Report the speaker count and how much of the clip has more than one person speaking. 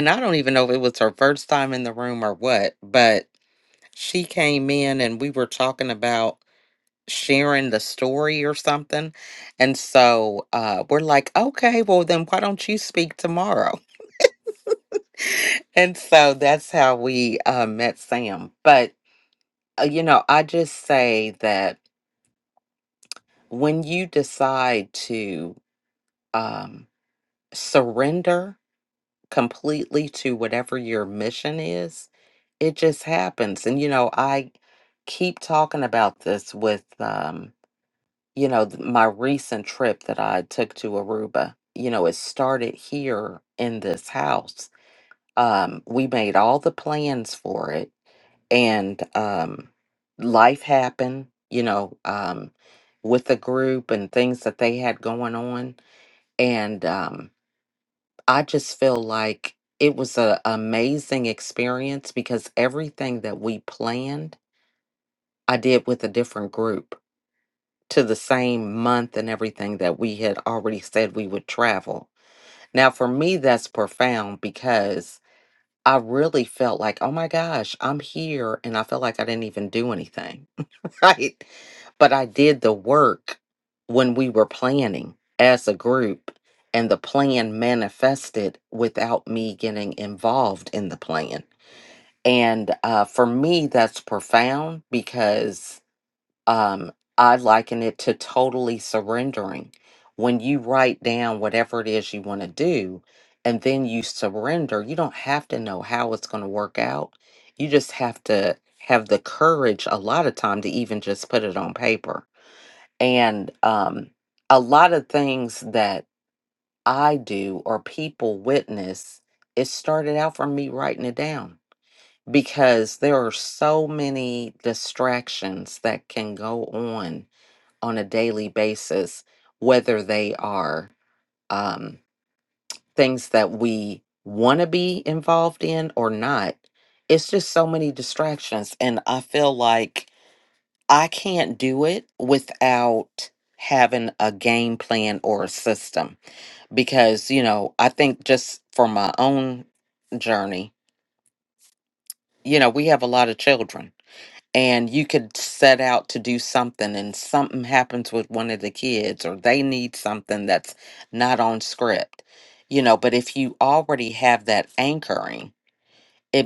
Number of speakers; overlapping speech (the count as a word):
one, no overlap